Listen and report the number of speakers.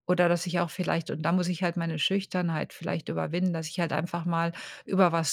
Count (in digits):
1